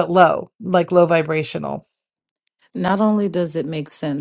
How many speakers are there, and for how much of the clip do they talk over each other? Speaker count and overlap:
2, no overlap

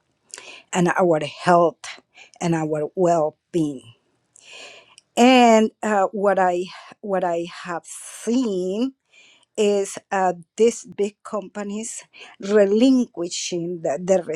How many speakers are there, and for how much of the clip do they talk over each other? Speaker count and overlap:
1, no overlap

